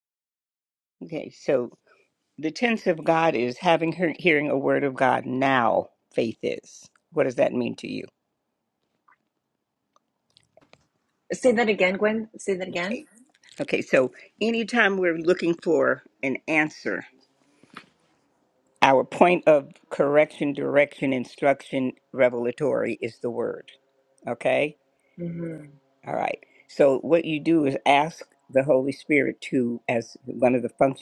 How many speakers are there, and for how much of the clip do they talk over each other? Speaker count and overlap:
two, no overlap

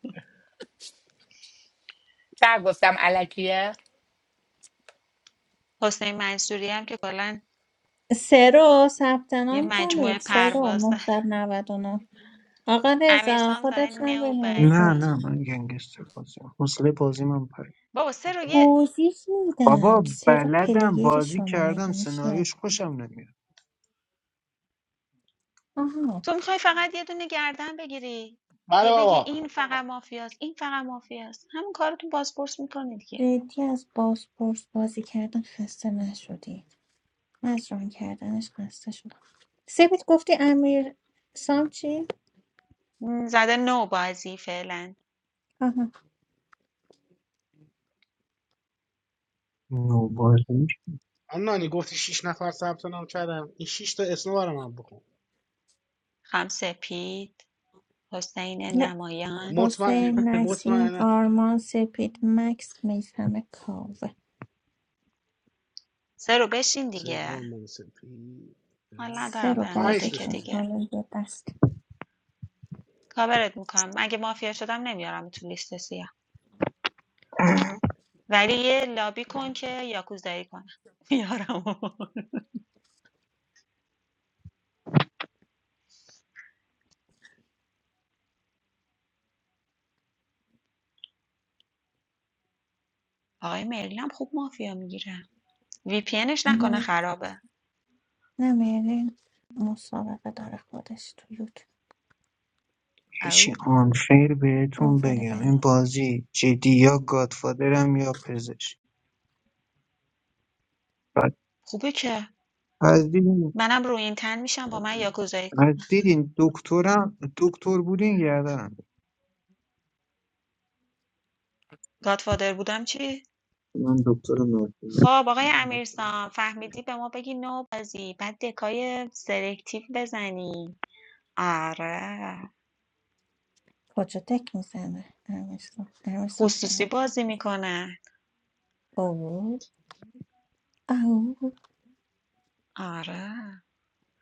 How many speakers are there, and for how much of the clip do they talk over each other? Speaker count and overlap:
five, about 8%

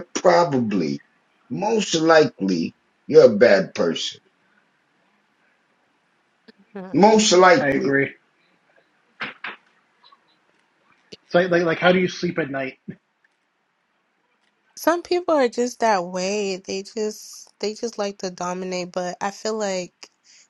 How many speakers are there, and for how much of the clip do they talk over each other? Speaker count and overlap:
three, about 2%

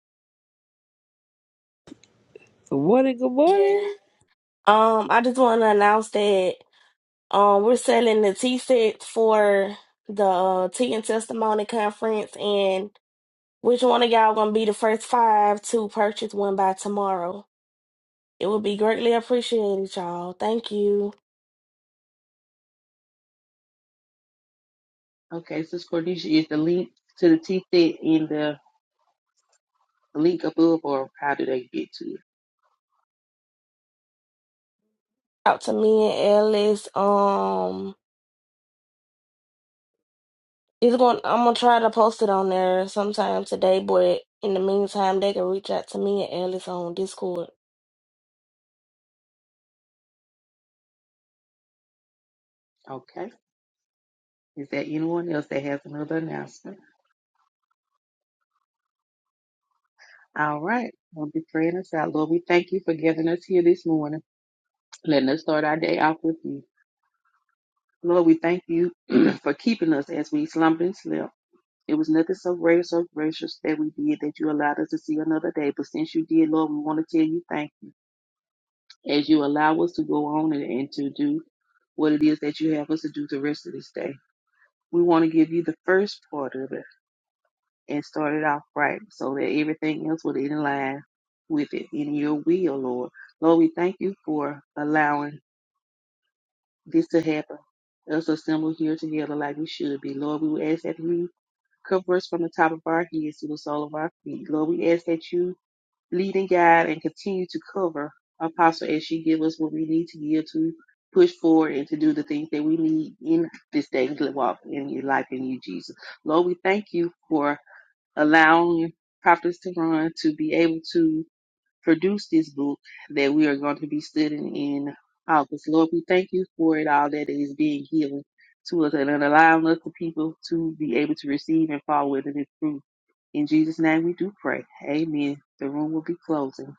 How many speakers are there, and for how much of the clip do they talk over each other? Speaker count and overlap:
three, under 1%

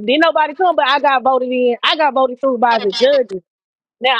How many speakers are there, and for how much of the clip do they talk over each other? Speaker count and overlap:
one, no overlap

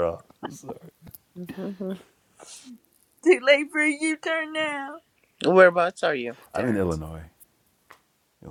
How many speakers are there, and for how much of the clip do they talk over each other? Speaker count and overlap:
three, about 4%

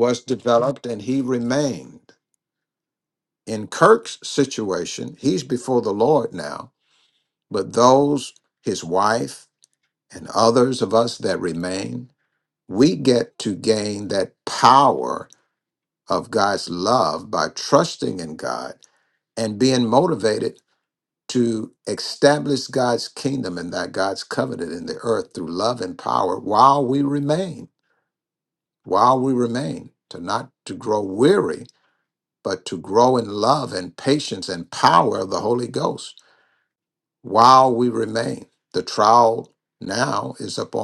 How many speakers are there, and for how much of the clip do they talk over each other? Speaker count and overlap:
one, no overlap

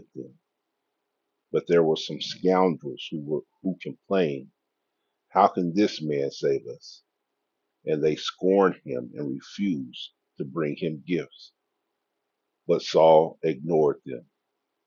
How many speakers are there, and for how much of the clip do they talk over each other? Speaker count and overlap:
one, no overlap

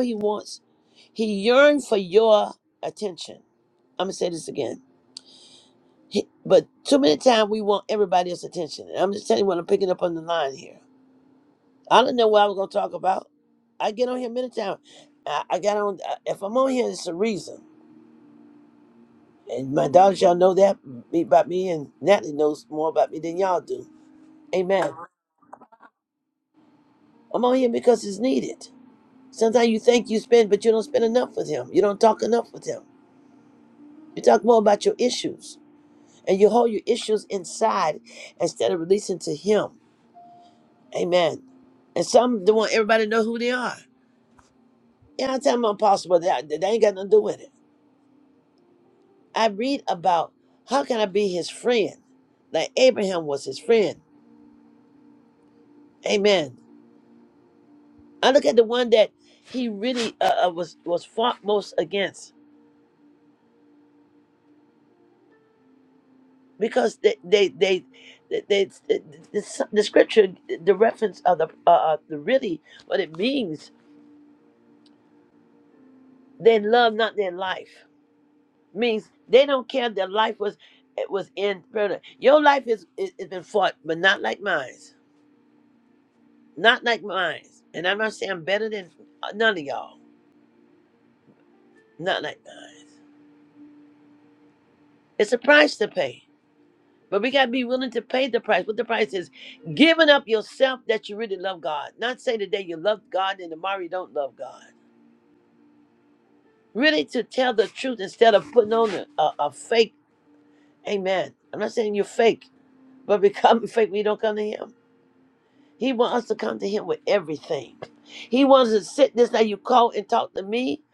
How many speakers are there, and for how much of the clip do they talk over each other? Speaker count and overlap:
one, no overlap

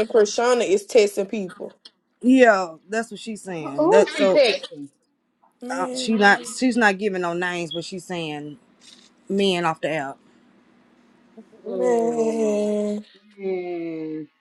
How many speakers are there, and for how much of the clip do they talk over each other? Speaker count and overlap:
three, about 18%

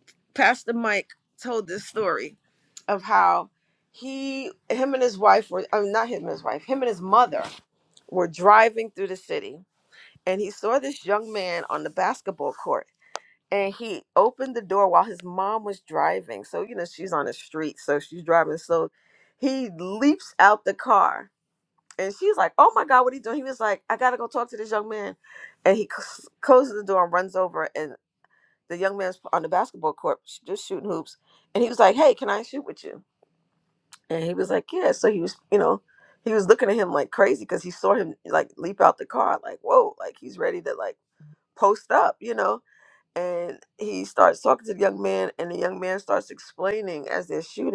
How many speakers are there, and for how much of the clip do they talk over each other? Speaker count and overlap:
one, no overlap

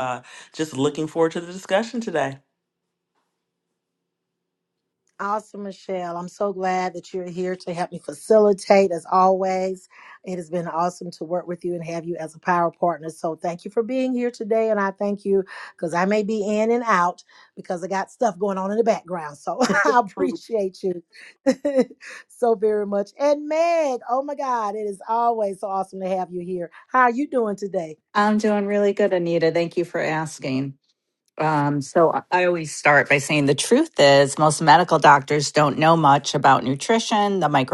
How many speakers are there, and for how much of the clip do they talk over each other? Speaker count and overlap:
three, no overlap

